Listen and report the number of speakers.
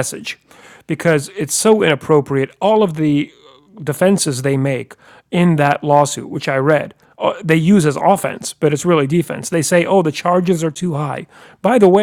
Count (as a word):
one